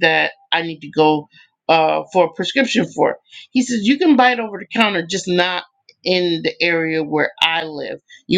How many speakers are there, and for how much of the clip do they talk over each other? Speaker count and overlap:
1, no overlap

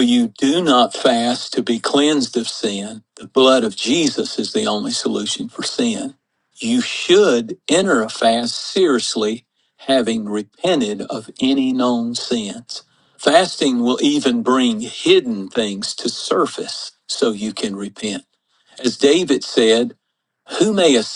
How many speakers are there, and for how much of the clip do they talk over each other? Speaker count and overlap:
1, no overlap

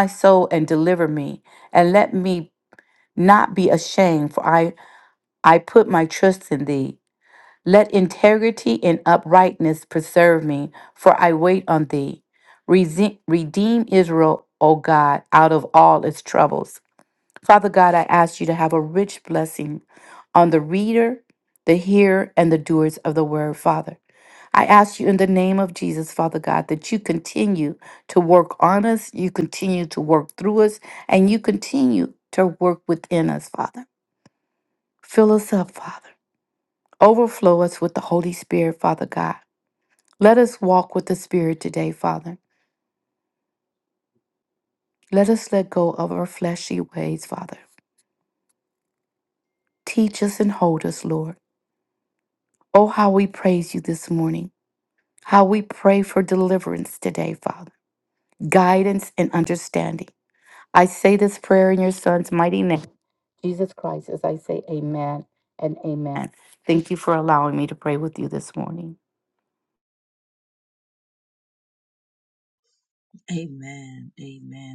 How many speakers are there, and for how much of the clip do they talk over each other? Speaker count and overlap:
2, no overlap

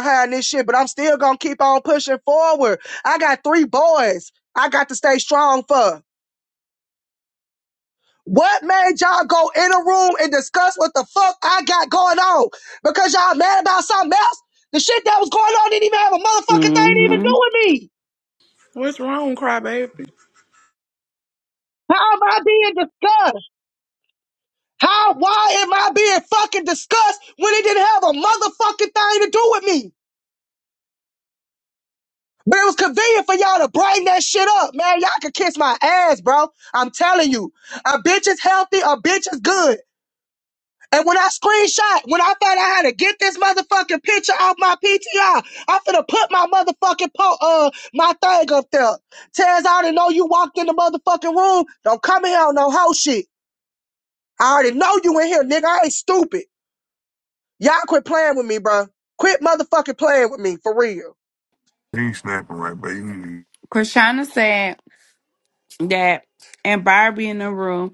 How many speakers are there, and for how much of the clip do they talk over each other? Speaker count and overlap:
4, about 1%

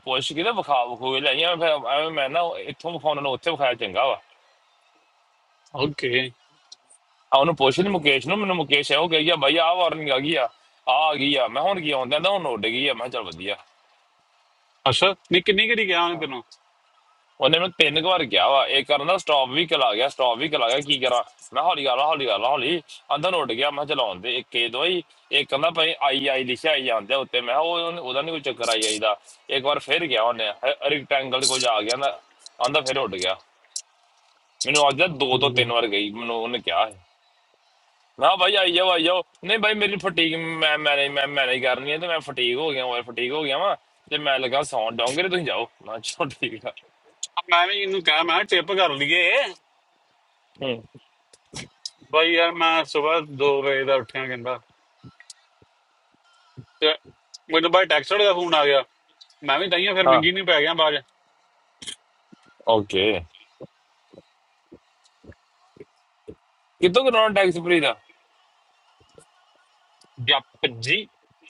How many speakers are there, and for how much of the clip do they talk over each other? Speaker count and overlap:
2, about 1%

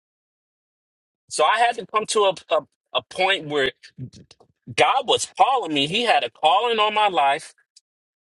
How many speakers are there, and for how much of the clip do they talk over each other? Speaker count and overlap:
1, no overlap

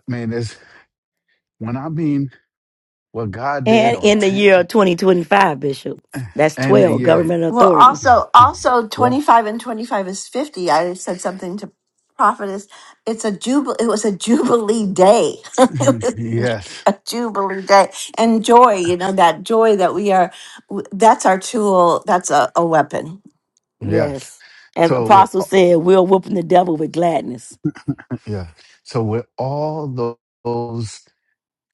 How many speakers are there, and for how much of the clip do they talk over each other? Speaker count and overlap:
3, about 11%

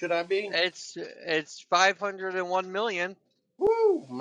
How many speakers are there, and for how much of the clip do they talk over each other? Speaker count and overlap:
2, about 1%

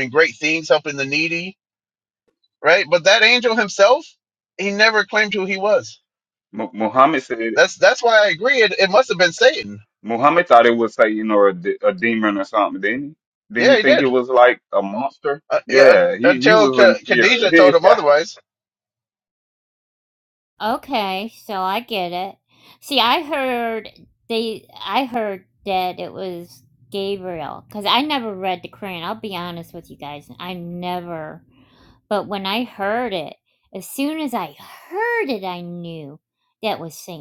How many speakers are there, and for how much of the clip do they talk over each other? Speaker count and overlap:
3, about 6%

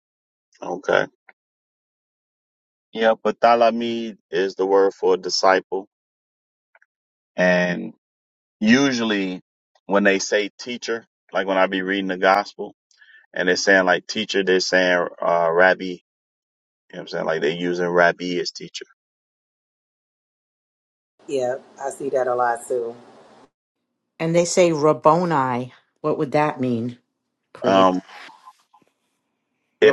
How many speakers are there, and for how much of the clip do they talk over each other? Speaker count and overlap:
3, about 1%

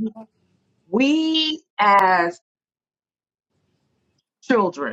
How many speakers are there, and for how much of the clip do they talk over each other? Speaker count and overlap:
1, no overlap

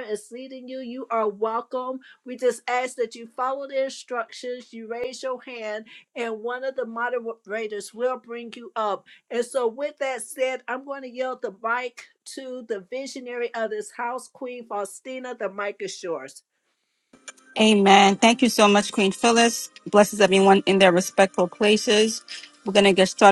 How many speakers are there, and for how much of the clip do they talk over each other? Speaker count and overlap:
2, no overlap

